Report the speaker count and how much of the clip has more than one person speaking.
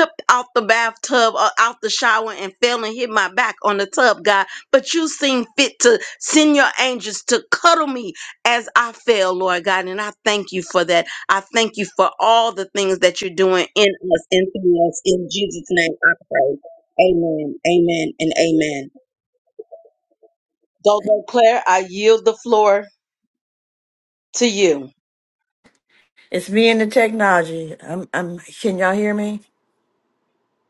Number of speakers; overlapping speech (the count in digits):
2, no overlap